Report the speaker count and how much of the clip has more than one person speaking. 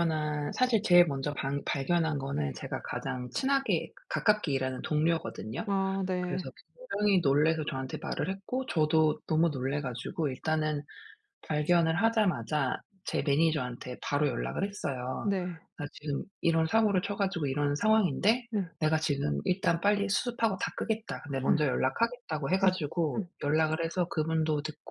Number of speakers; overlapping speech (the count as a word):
two, about 2%